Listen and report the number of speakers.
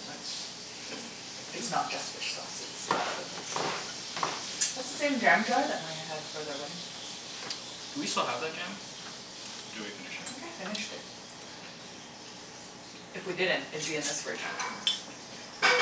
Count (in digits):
2